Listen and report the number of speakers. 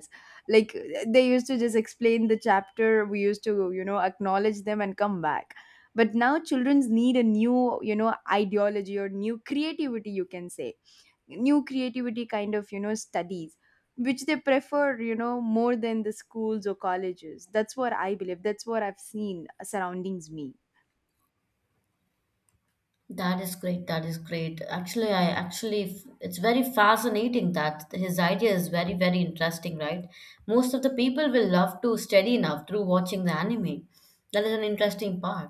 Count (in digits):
2